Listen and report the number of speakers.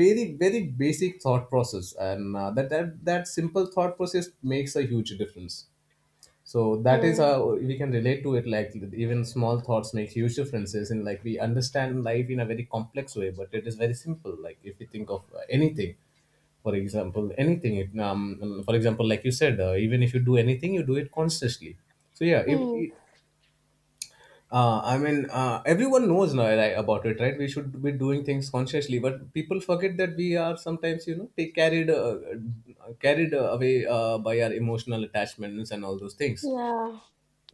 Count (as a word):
two